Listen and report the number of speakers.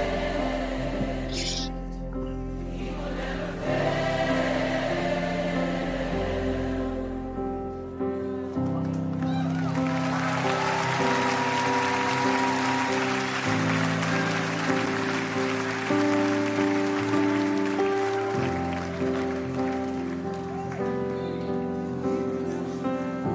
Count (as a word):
zero